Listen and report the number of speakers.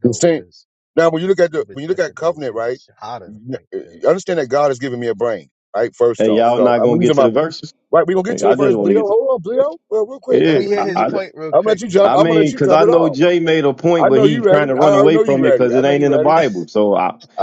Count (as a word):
three